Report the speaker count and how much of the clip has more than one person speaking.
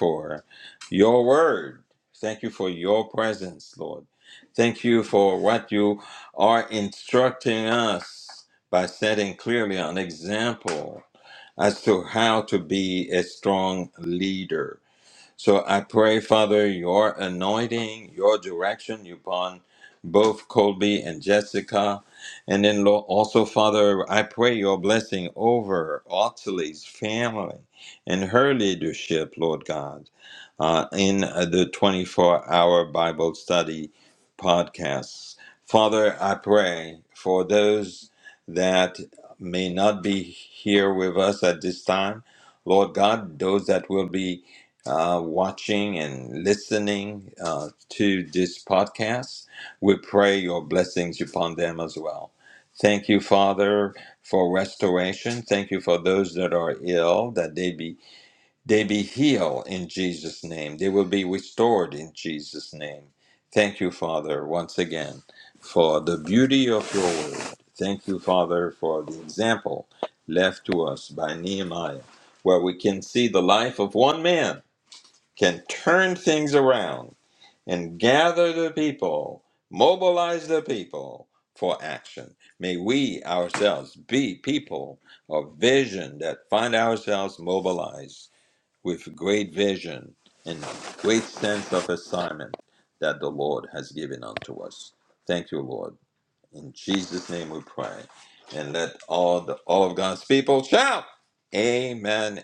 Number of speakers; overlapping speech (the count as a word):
one, no overlap